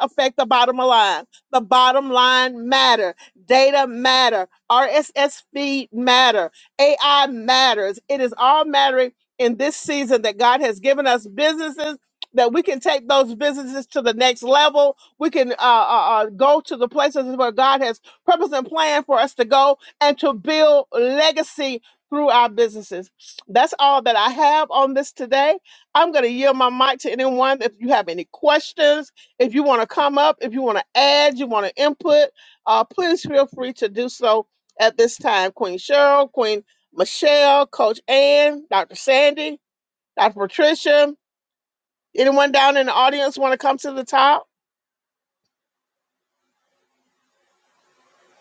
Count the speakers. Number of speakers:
1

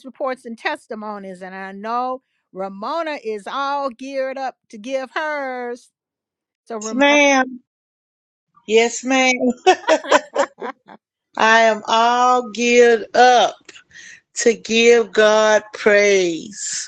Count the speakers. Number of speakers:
2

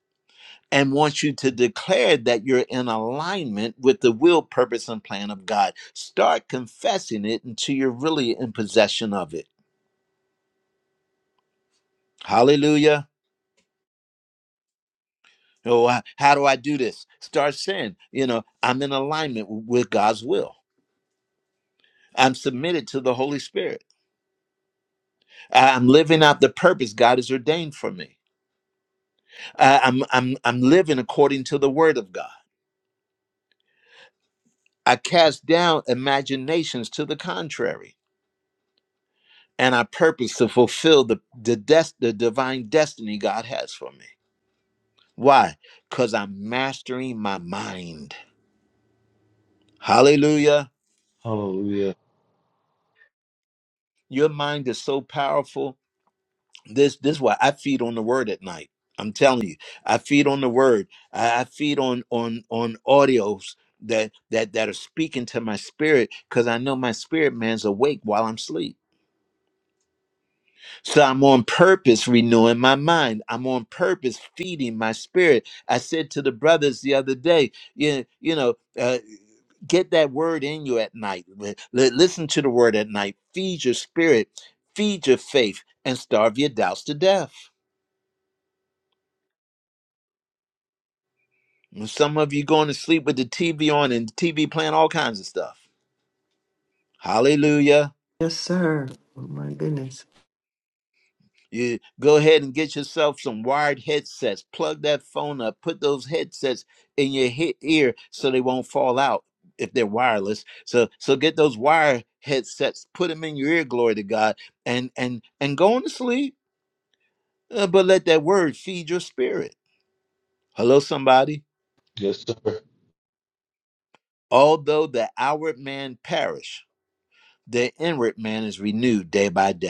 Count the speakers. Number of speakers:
3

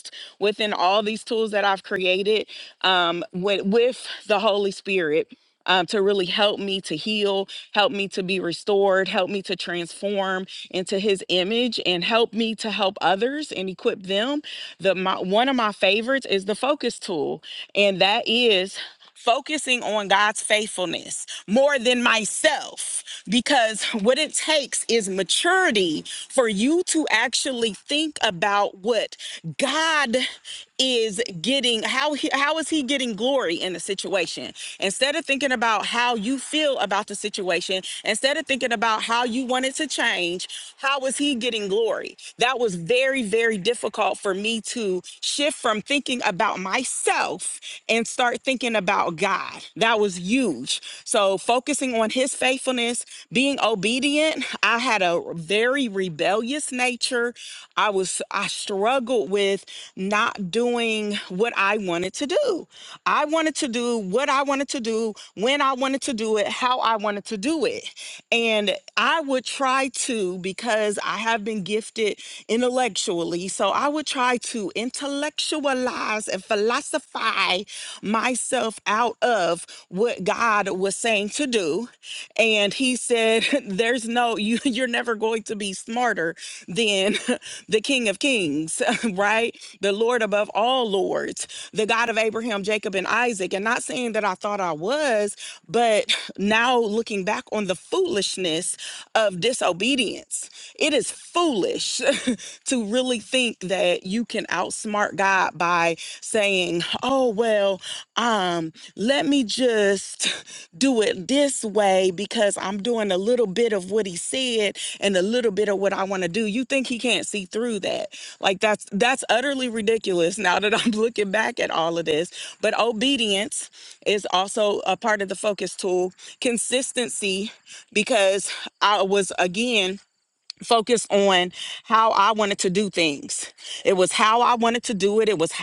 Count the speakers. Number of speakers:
1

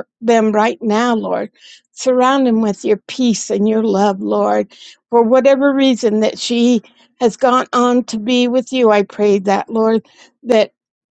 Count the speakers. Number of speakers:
1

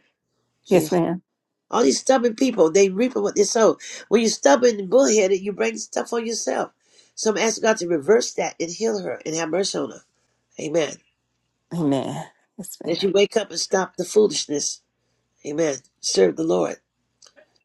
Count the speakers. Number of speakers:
2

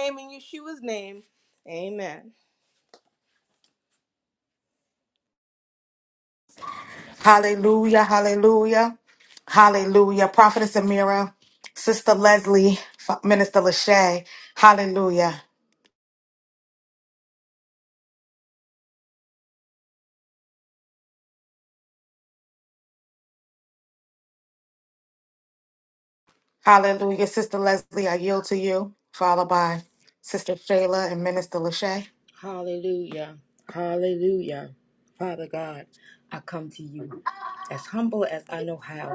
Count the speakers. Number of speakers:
3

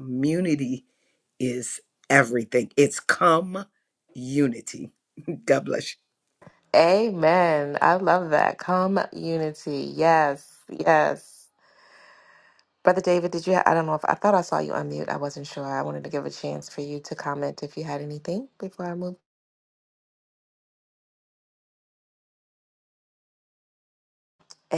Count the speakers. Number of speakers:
2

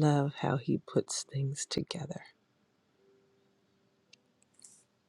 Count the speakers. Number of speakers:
1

